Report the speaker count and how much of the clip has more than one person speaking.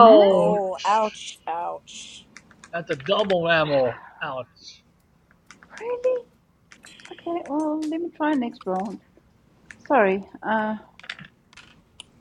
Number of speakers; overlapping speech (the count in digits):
3, about 4%